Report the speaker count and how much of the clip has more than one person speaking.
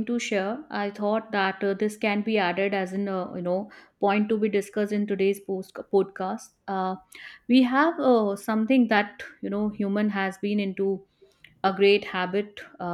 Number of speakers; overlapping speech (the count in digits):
1, no overlap